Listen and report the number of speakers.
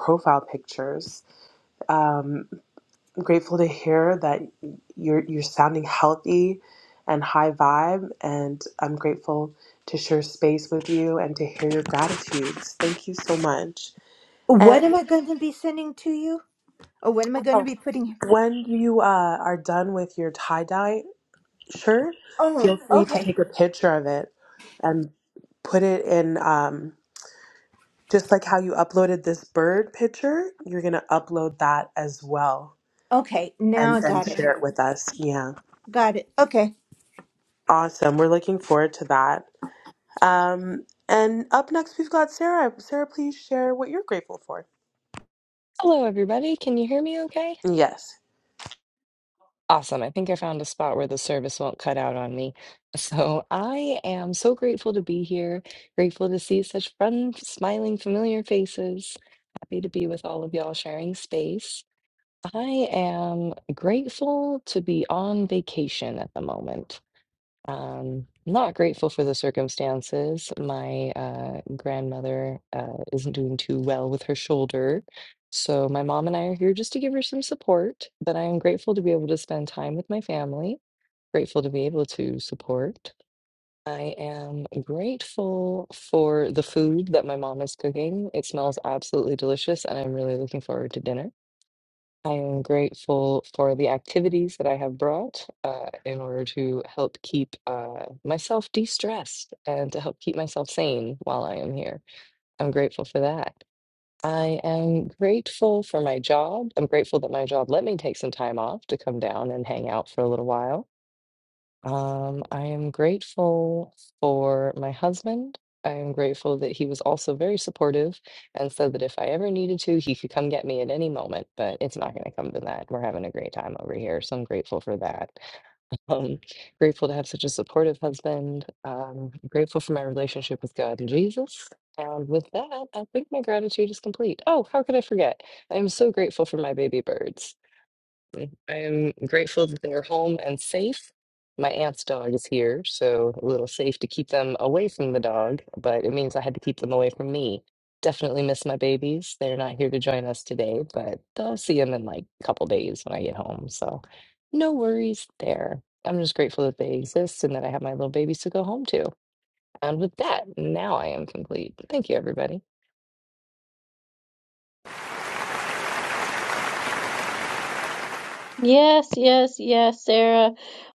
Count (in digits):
4